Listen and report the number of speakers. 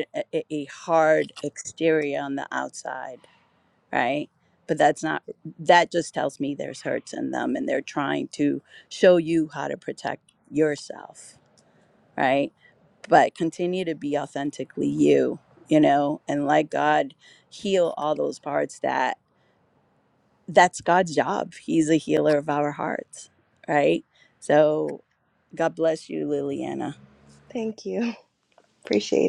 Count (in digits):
2